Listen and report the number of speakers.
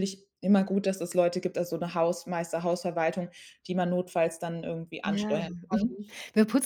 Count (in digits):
2